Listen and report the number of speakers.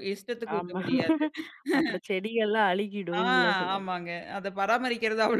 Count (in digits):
2